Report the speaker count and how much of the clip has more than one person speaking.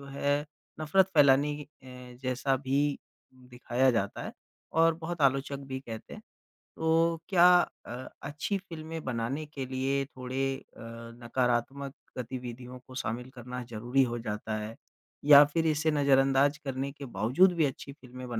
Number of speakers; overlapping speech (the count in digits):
1, no overlap